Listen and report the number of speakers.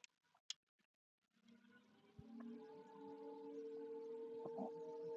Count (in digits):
0